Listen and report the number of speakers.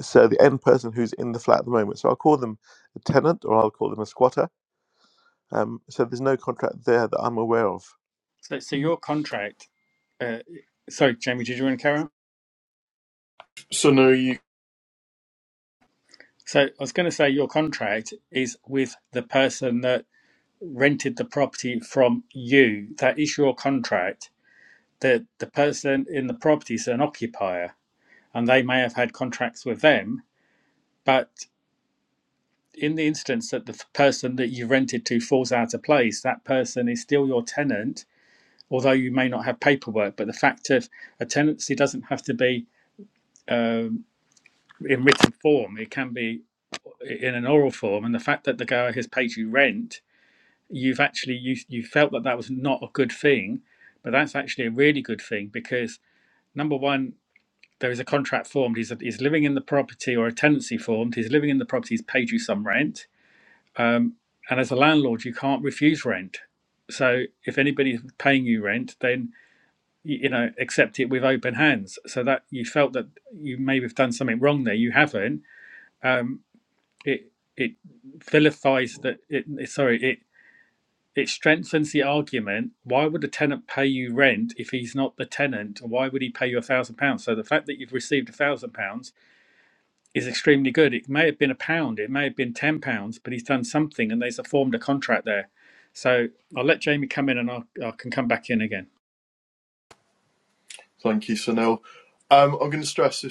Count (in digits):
3